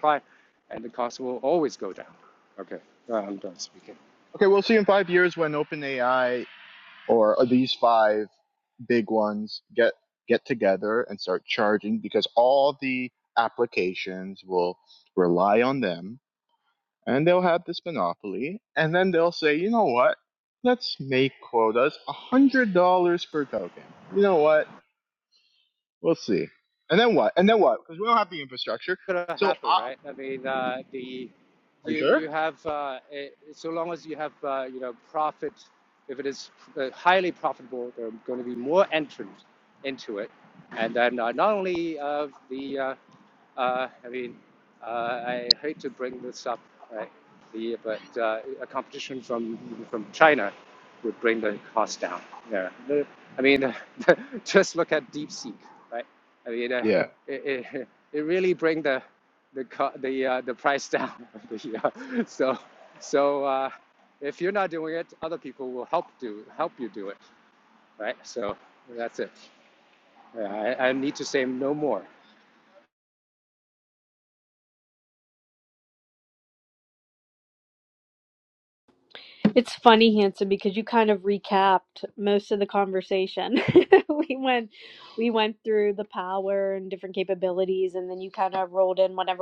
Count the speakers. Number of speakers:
3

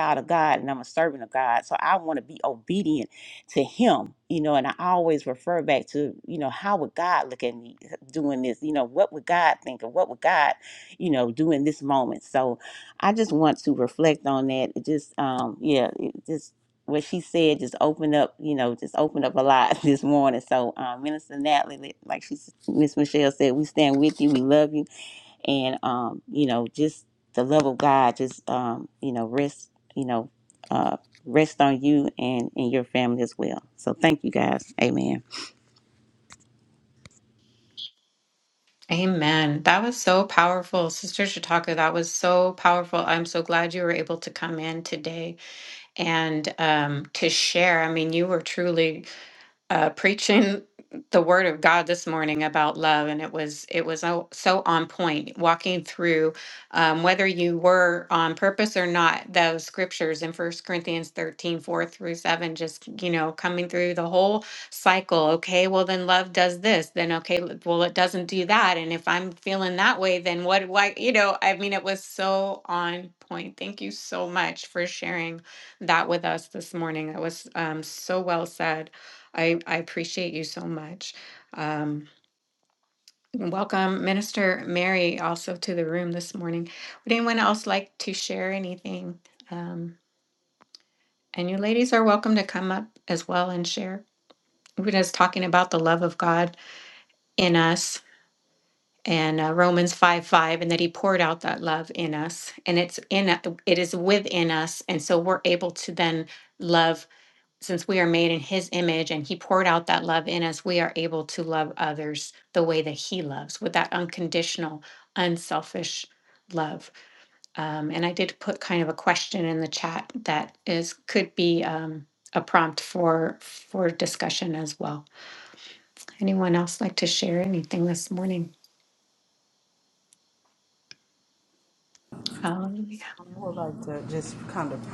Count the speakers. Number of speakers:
3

